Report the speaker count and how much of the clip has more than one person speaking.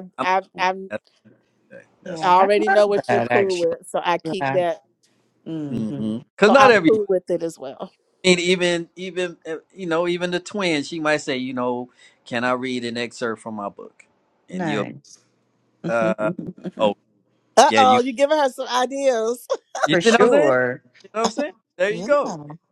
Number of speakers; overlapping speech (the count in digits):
3, about 22%